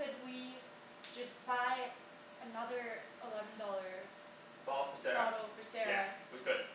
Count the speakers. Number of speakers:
two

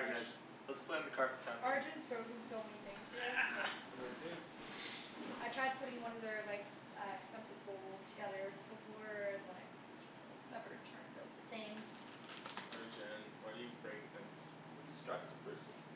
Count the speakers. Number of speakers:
three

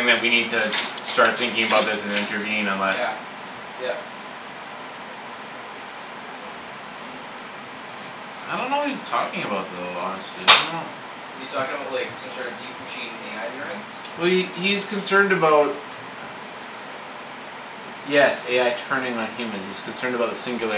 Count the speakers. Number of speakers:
two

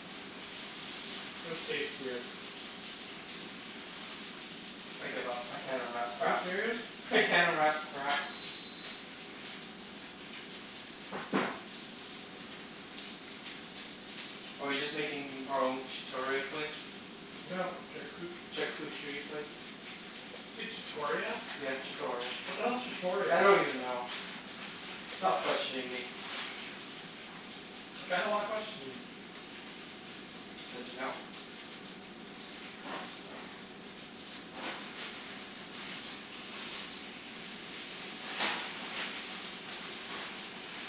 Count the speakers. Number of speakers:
two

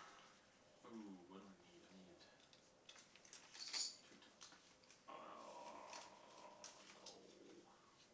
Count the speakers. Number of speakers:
one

